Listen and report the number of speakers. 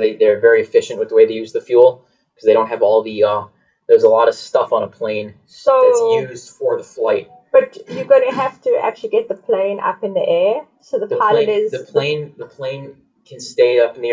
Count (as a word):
two